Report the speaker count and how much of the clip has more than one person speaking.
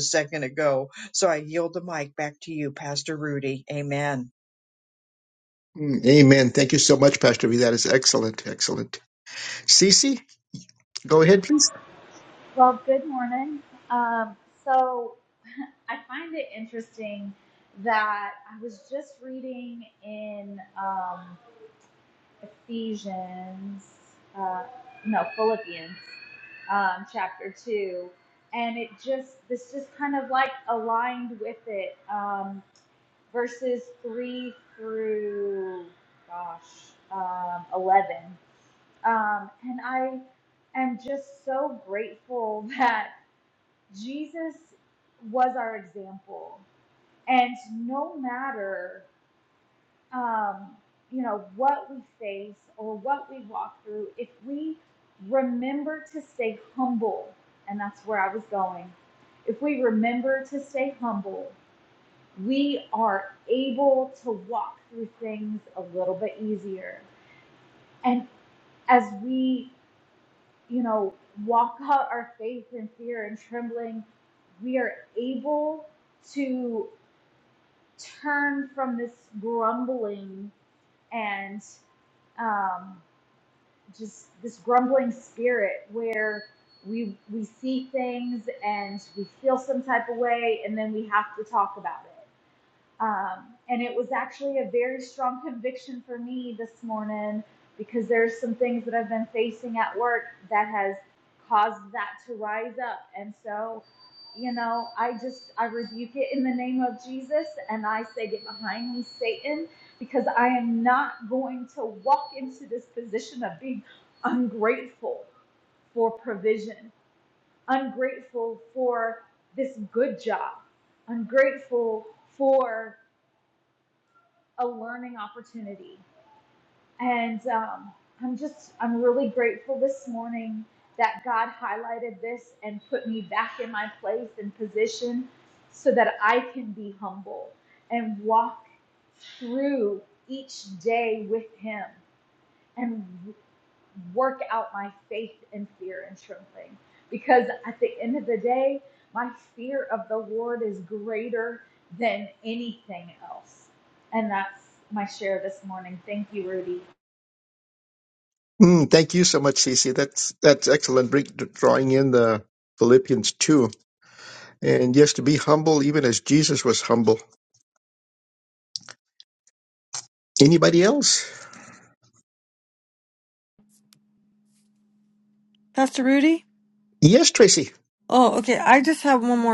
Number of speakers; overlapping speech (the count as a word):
four, no overlap